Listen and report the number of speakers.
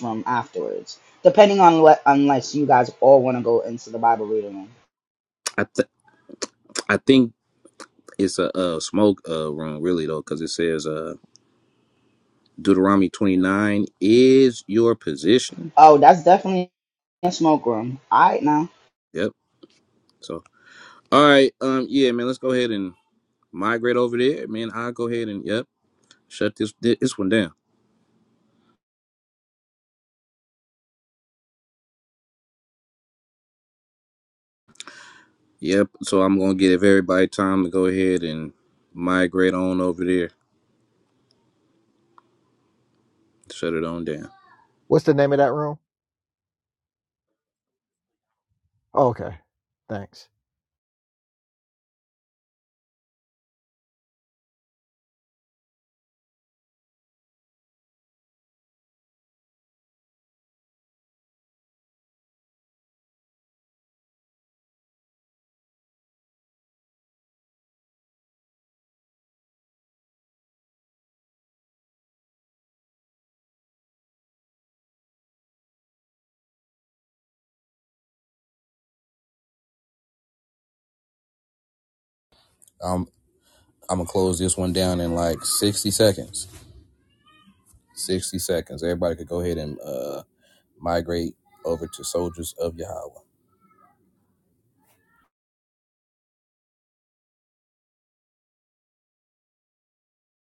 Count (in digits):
3